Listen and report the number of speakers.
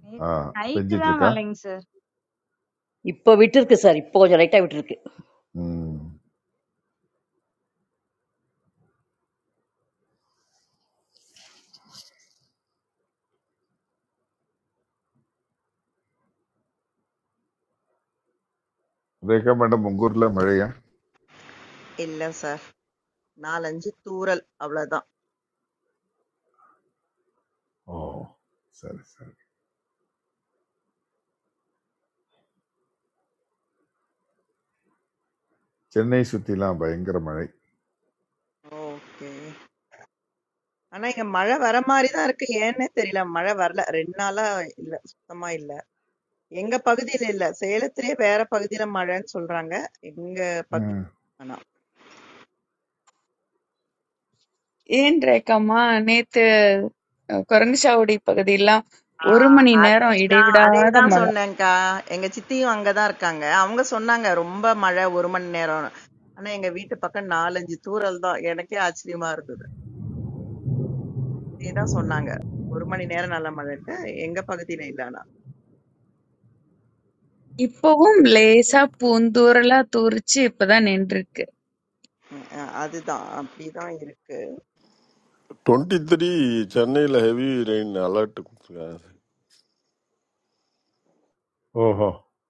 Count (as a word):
six